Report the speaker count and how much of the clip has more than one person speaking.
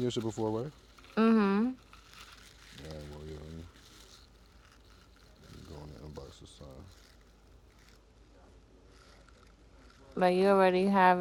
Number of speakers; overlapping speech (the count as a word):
two, no overlap